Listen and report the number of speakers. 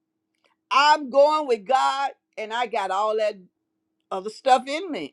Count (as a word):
one